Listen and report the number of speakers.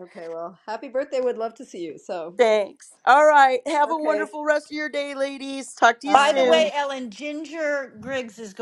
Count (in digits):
3